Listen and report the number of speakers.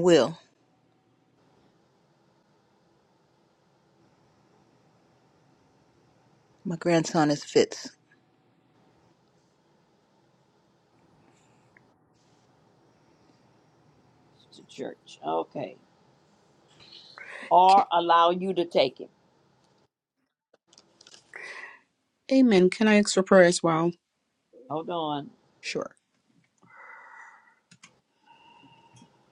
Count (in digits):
3